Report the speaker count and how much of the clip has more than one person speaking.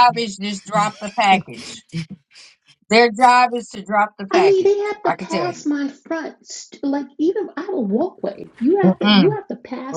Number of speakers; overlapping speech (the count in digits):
2, about 14%